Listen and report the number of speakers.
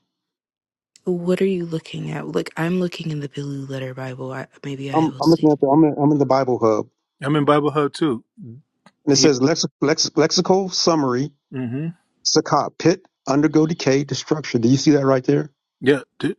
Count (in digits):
3